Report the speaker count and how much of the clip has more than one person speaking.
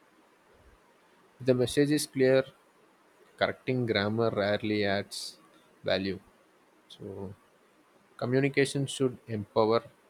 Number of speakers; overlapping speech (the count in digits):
1, no overlap